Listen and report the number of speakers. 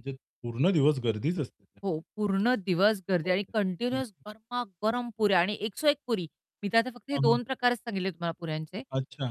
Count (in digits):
2